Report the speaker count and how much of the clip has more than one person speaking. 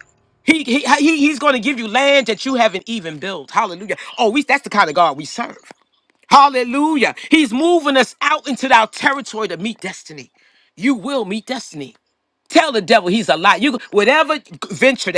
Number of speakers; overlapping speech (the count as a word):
one, no overlap